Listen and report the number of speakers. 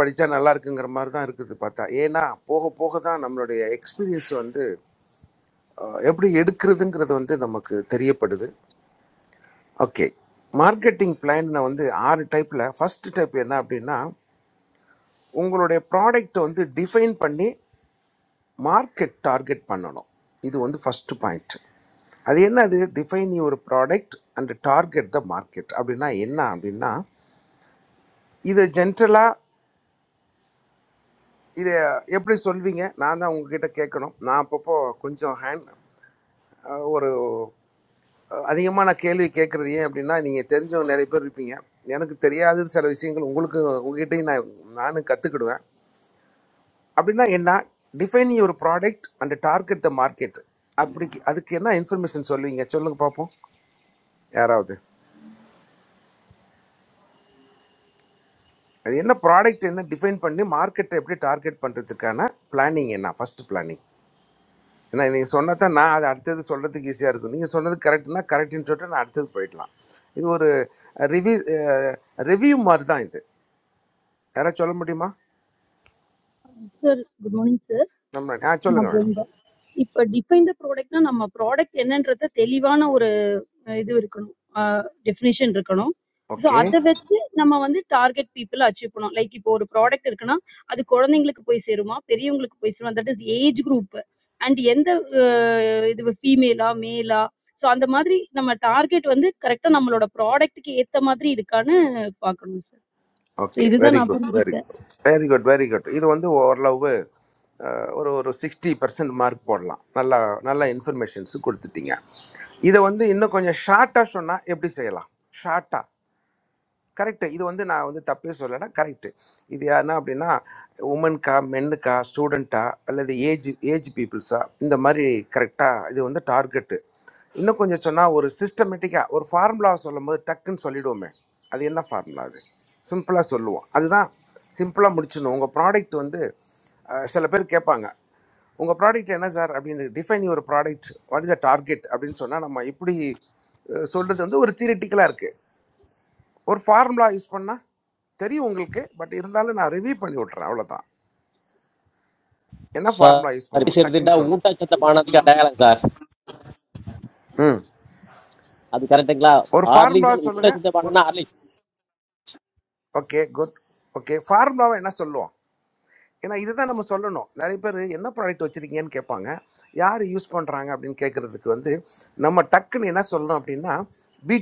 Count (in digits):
3